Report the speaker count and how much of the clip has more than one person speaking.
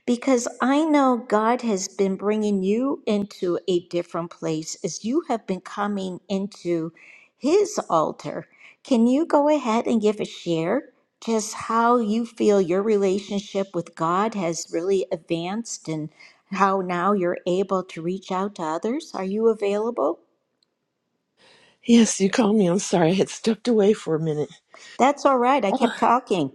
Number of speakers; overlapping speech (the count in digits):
2, about 1%